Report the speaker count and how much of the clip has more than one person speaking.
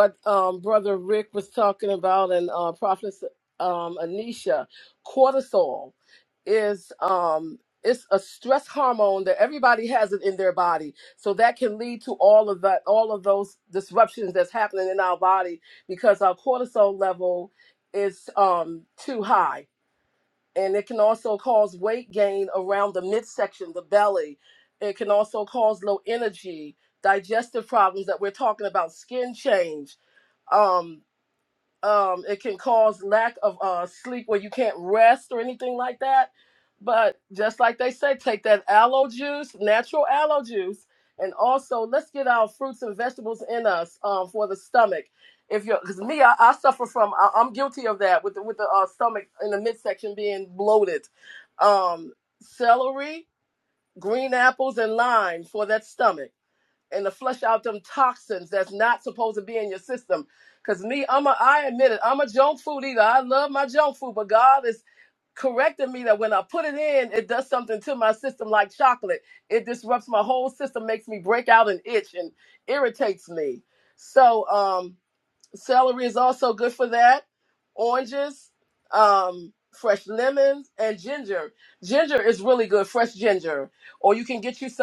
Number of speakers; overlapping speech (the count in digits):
1, no overlap